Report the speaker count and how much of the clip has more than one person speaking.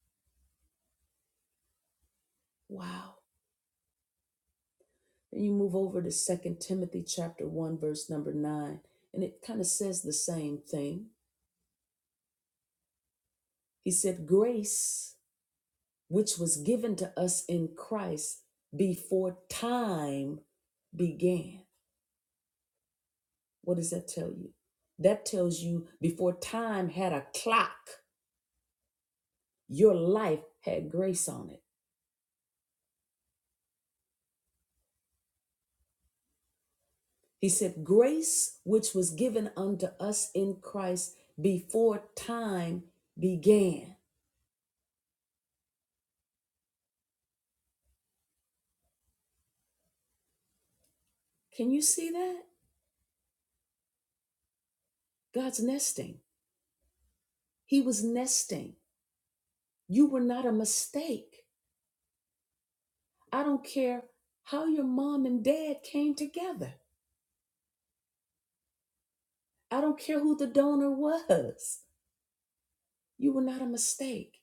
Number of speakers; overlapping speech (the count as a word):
one, no overlap